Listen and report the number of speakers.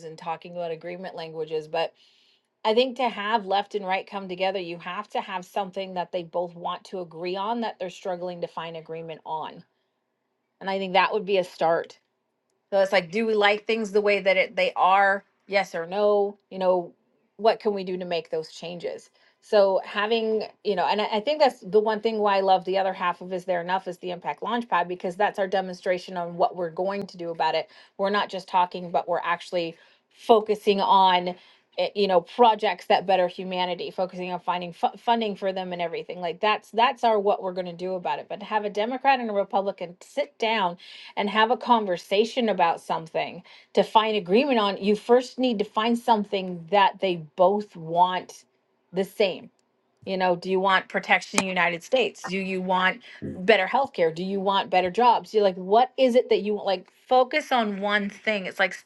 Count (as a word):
one